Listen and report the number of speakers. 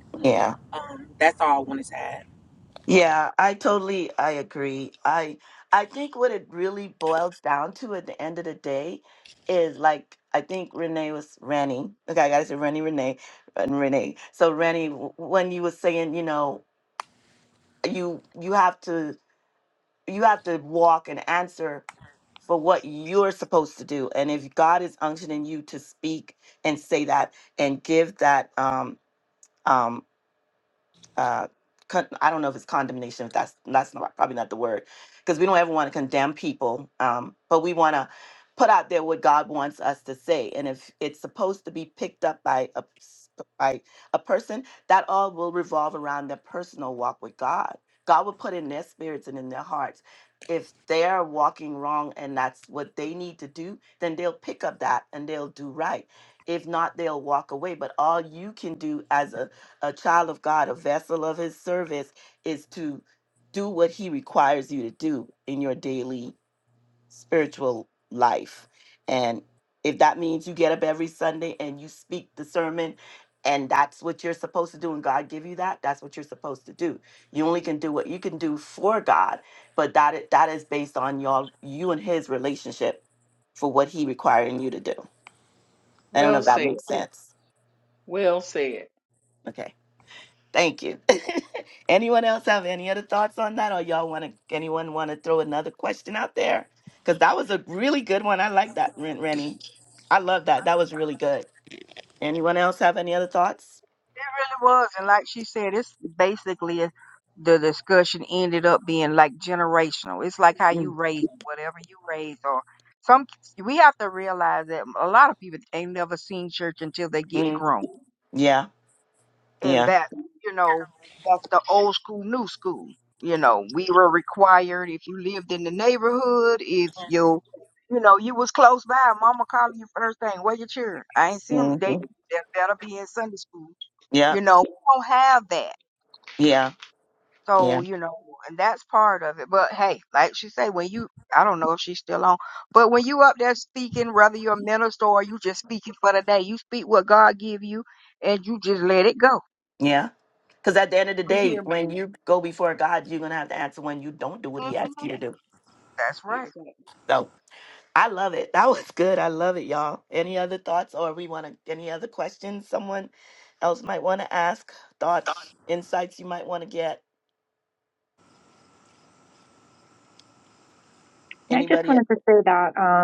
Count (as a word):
five